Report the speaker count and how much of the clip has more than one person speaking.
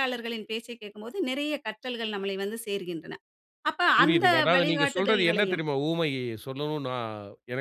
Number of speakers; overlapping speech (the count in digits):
2, about 21%